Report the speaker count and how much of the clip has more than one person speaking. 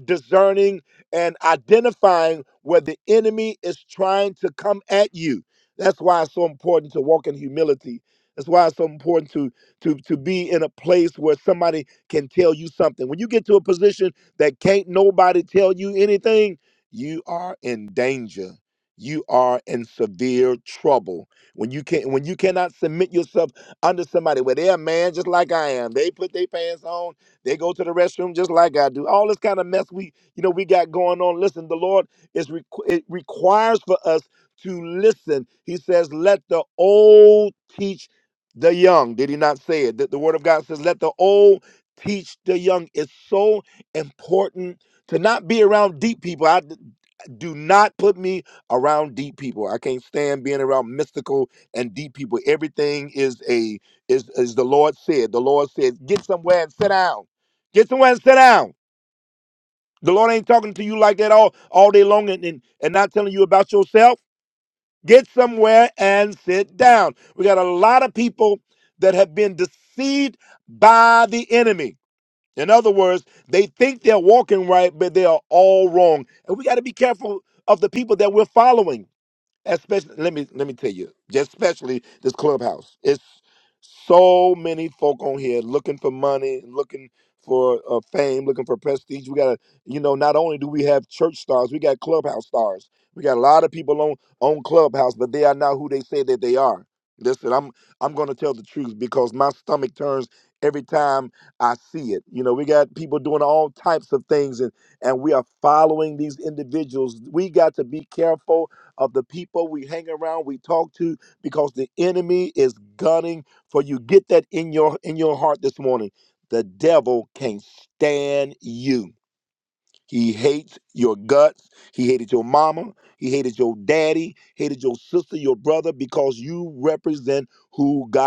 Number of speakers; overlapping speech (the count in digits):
1, no overlap